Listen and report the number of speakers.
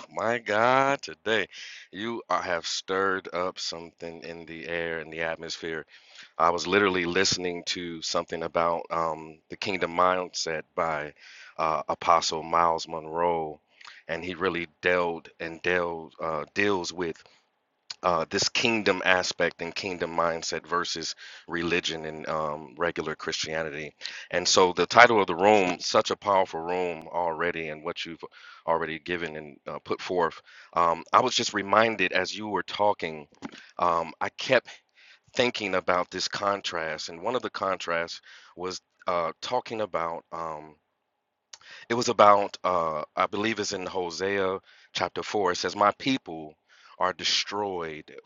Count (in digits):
1